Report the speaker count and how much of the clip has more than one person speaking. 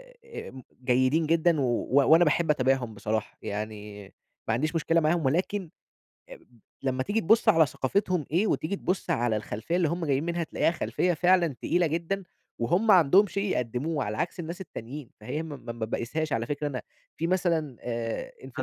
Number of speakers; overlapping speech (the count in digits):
1, no overlap